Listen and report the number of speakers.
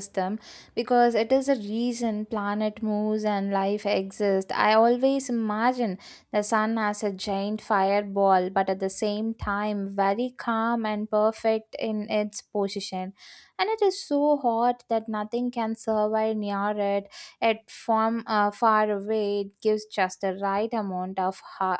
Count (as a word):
one